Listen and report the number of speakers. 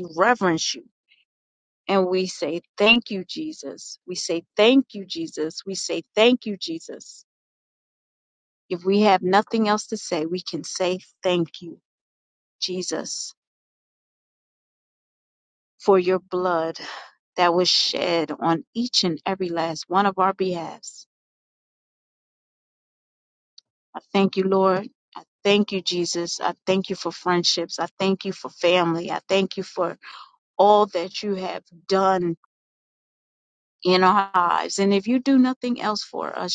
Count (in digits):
1